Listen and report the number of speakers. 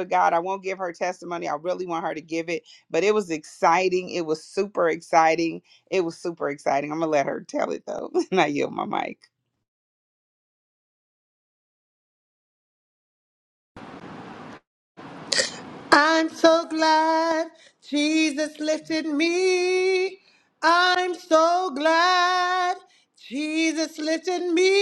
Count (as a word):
two